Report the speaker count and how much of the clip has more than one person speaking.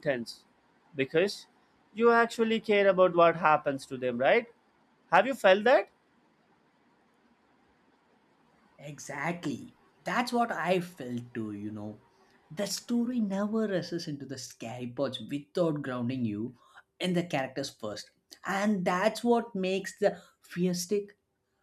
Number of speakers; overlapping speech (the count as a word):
two, no overlap